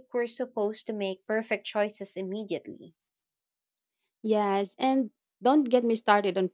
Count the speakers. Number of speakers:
2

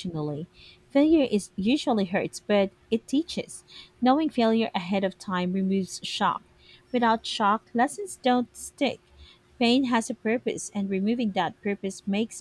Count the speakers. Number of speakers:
1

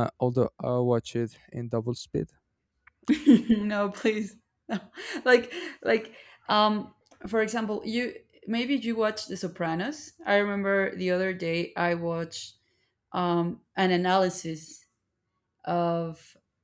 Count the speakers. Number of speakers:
2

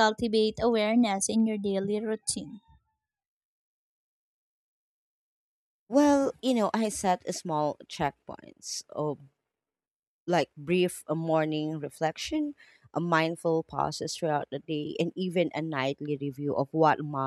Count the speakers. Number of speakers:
2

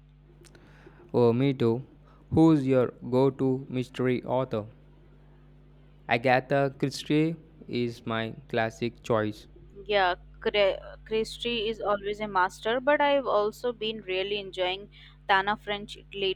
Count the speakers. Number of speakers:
2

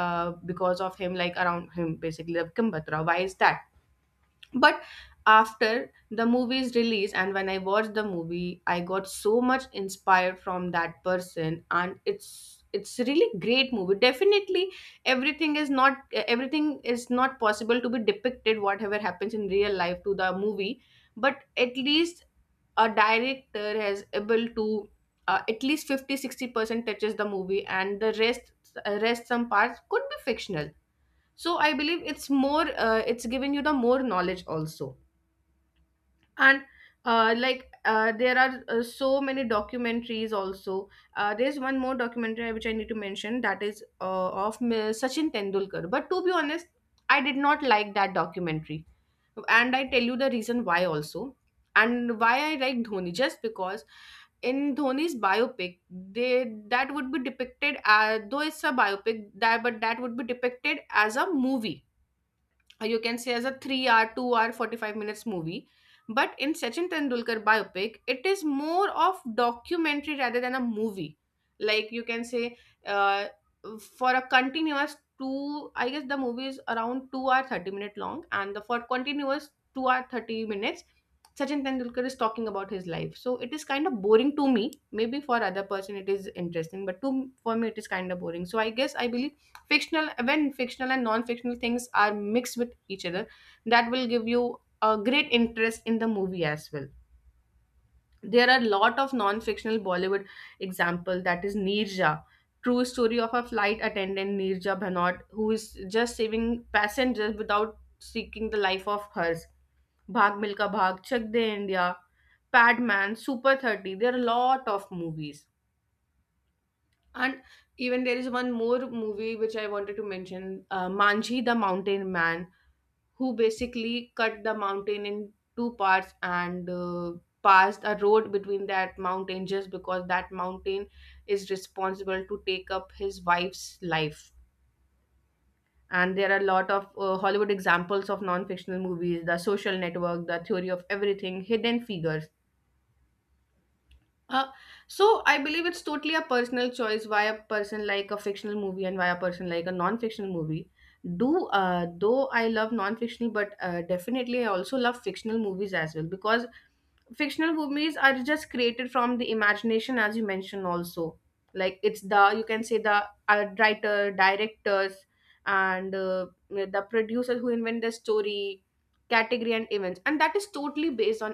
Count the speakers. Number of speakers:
1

